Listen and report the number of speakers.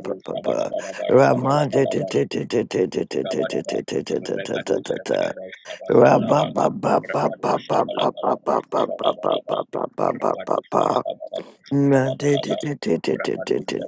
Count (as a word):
two